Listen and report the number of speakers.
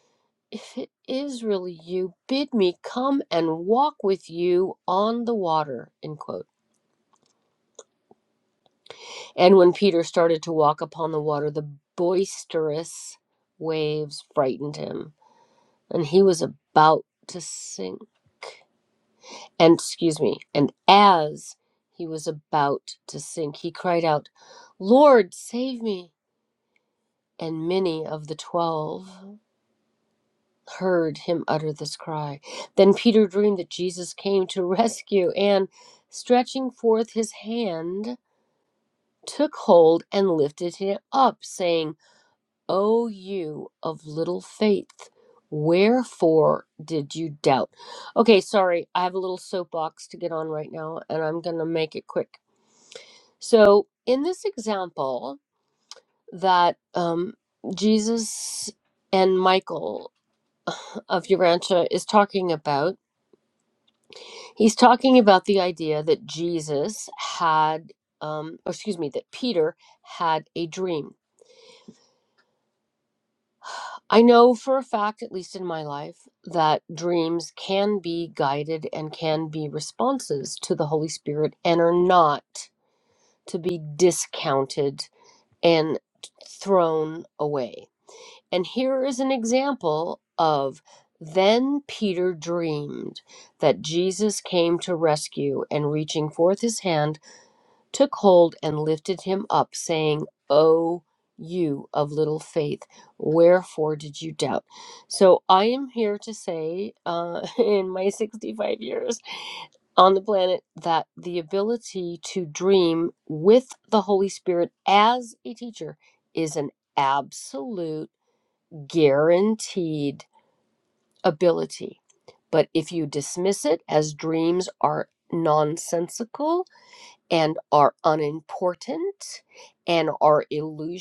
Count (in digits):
1